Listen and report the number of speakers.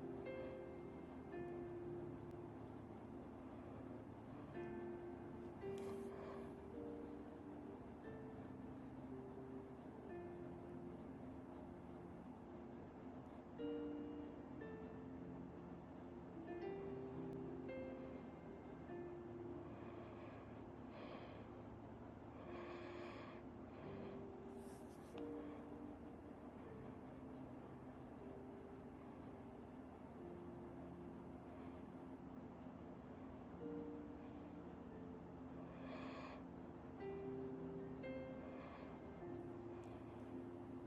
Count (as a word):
zero